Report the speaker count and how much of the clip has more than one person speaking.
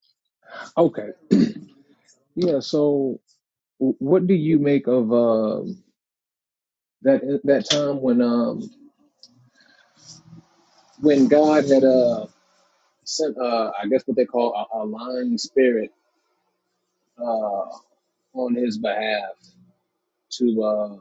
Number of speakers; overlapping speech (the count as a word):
one, no overlap